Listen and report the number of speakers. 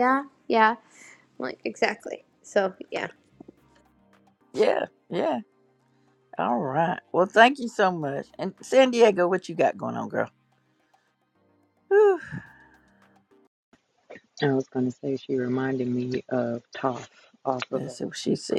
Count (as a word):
three